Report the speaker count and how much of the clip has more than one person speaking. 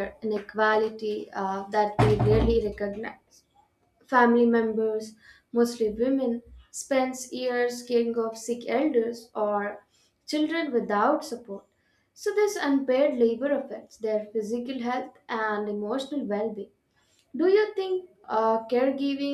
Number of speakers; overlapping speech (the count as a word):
one, no overlap